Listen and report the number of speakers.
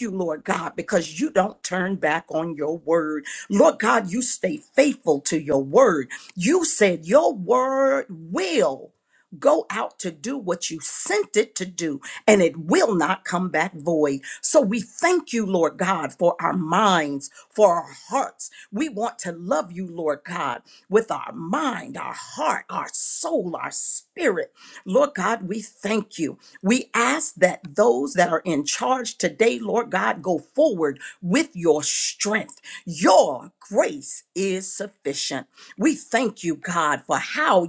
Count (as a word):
one